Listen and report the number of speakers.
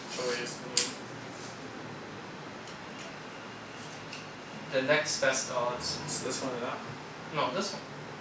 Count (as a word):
two